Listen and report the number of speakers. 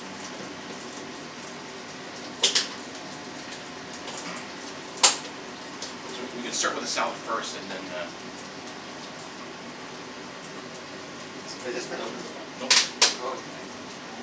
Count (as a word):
two